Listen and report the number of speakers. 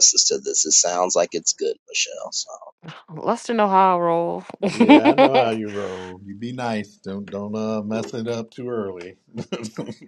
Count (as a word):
three